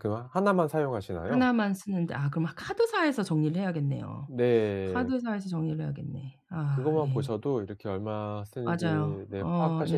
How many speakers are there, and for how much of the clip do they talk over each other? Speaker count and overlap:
two, about 19%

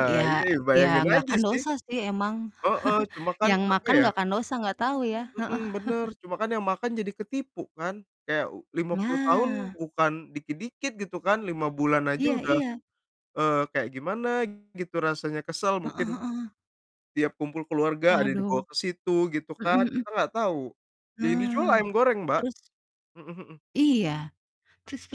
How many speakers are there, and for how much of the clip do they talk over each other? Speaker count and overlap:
two, about 21%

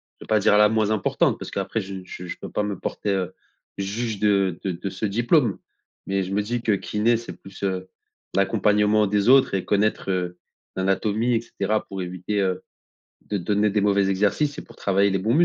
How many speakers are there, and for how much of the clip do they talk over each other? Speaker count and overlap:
one, no overlap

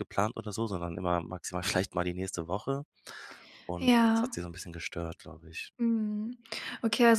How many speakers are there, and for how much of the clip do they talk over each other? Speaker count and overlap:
two, about 7%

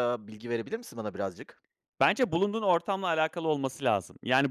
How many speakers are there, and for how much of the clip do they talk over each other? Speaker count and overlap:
two, no overlap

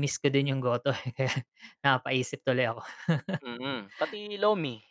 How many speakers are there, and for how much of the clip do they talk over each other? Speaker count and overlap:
two, no overlap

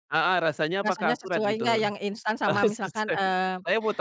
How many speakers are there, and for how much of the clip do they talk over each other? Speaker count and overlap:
two, about 31%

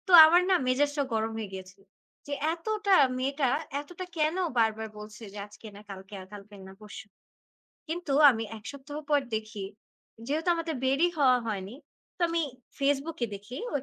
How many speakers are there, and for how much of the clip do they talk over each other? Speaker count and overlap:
one, no overlap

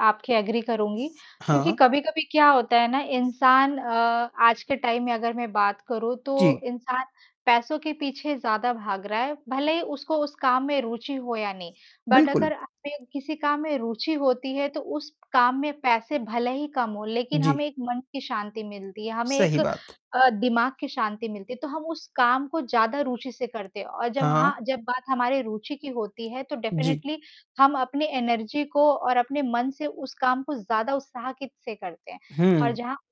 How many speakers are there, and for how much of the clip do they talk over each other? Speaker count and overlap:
two, about 6%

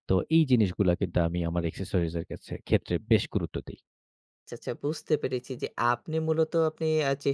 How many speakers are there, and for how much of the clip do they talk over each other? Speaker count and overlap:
two, no overlap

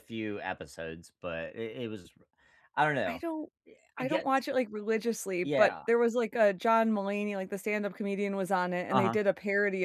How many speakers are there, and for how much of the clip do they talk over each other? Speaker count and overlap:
two, about 11%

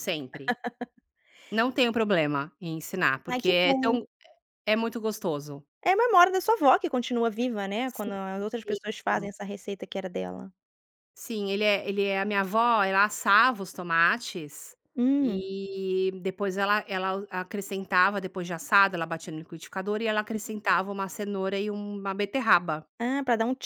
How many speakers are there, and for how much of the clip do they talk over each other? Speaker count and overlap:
two, about 7%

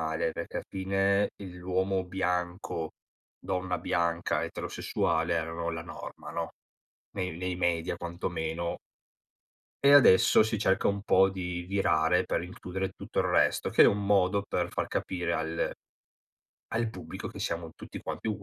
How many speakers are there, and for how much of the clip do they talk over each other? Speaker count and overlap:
one, no overlap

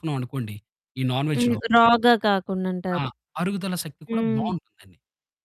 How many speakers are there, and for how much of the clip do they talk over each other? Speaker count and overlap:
two, about 14%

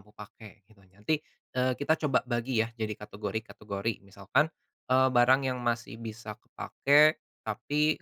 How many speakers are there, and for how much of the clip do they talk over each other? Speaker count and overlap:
one, no overlap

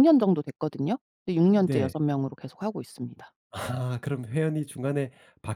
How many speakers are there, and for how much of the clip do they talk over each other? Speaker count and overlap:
two, about 7%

